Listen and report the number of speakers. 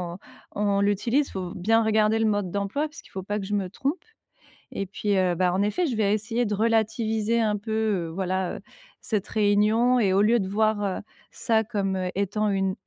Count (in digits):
1